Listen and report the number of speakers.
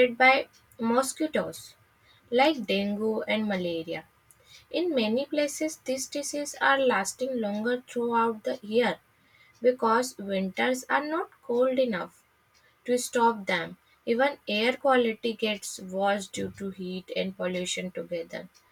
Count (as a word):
one